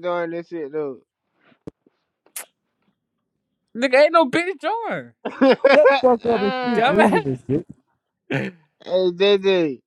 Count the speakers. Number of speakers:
three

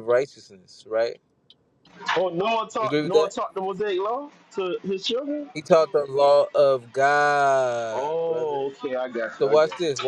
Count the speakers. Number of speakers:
two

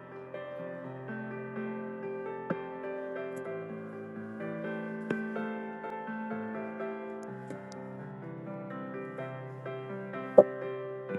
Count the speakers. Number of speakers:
zero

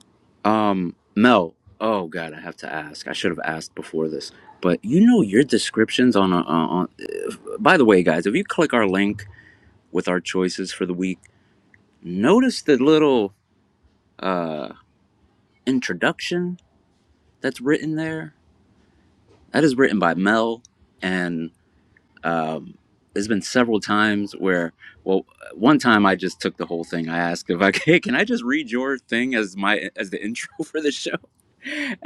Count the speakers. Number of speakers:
one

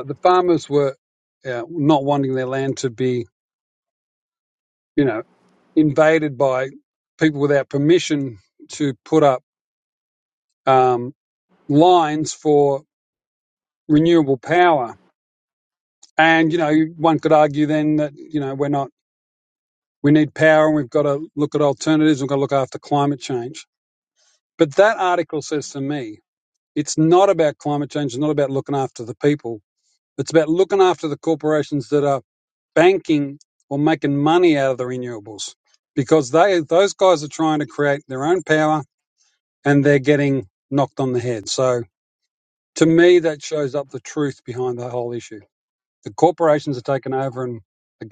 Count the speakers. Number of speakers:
one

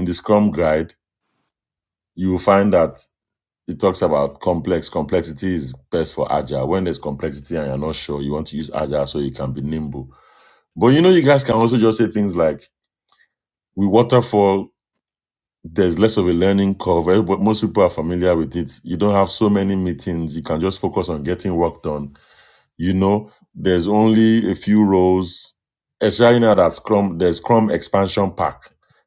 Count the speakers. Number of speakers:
one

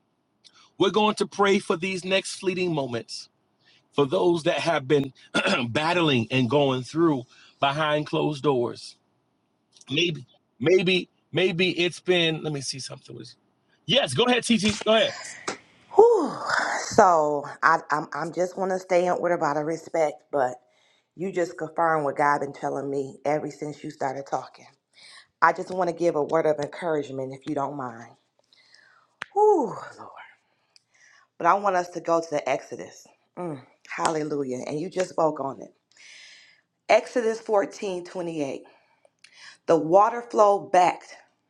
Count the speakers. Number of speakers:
two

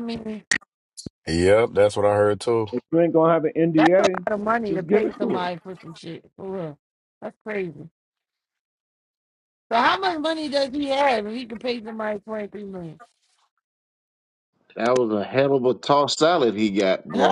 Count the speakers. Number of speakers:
four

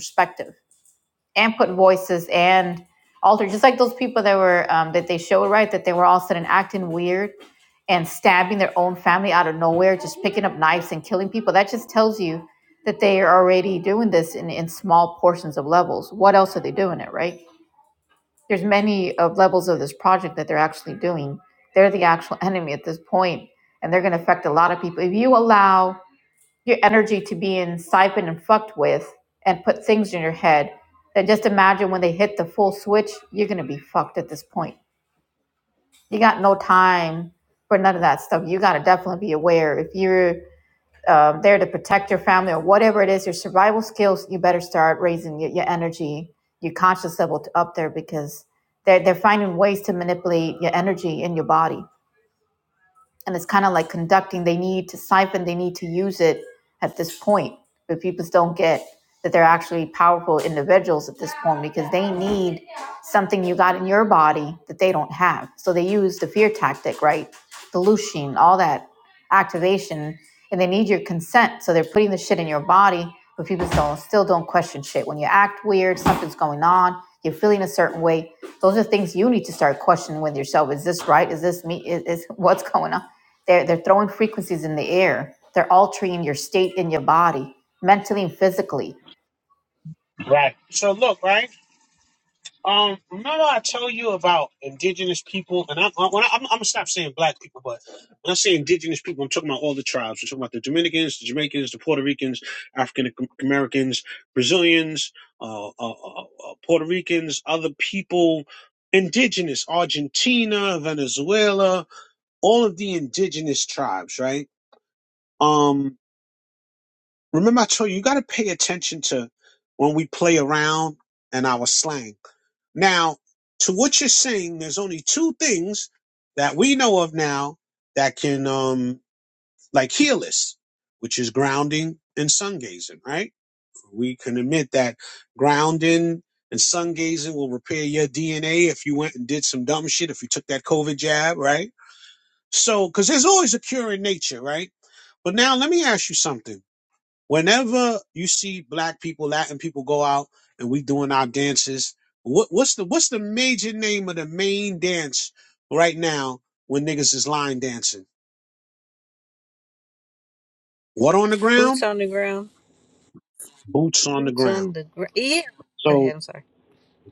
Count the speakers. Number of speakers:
three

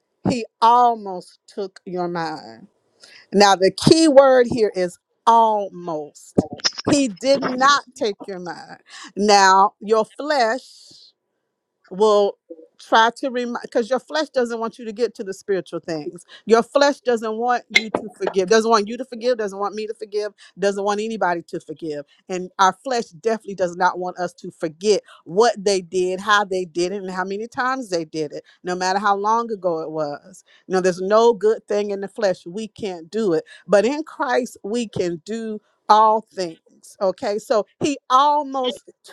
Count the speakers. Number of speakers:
one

